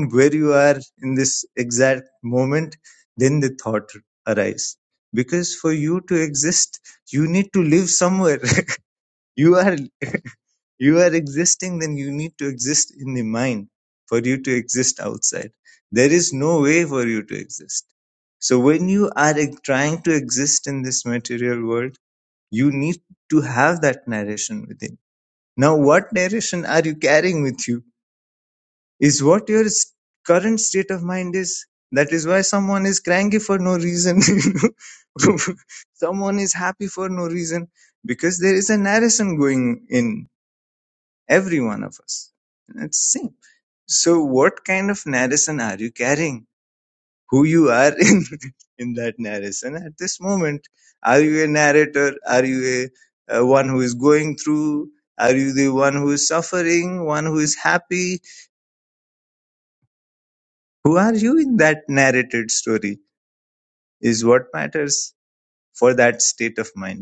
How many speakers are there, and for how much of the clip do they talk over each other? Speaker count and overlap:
one, no overlap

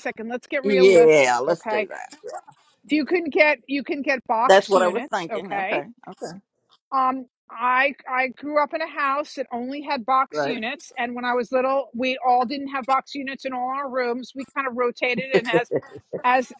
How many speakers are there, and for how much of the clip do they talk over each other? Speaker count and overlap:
two, about 17%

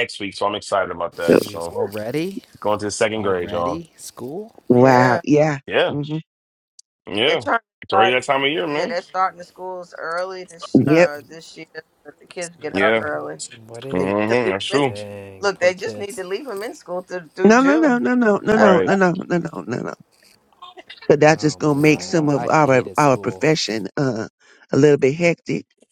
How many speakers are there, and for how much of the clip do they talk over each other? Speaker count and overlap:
four, about 32%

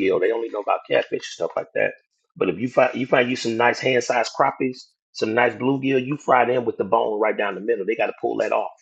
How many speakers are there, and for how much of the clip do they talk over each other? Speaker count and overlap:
one, no overlap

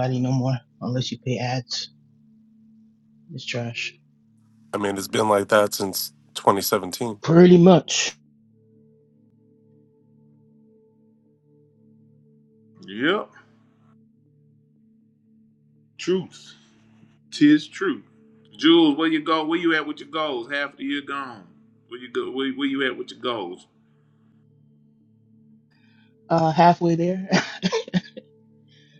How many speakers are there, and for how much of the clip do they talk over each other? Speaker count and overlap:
three, no overlap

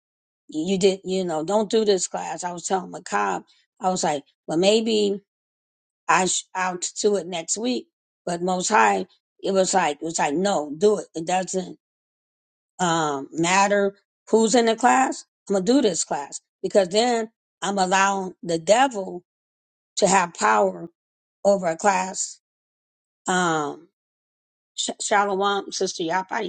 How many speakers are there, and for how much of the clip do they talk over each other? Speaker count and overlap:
one, no overlap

